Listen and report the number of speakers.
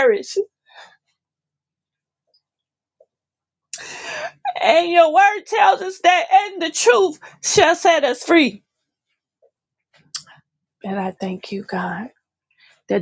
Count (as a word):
one